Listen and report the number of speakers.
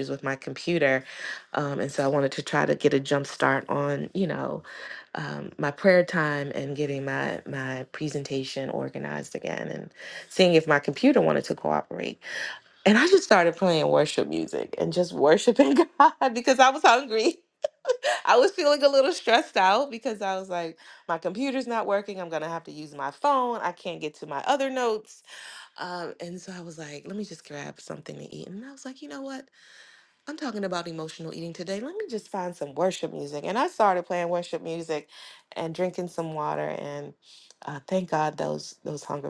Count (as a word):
one